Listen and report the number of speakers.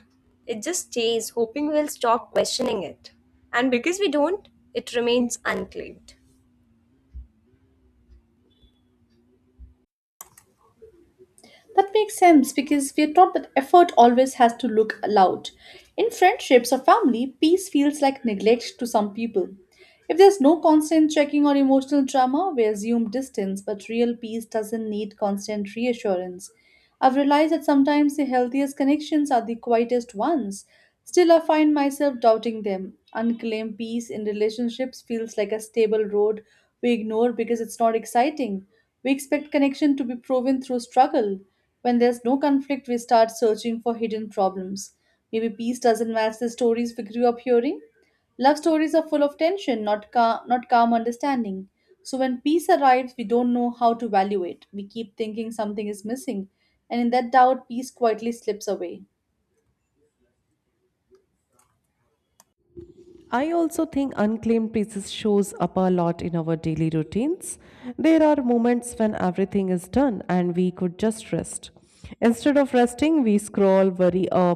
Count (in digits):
3